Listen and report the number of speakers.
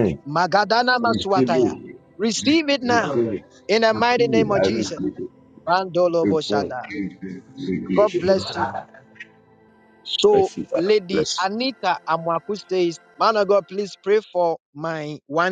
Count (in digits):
2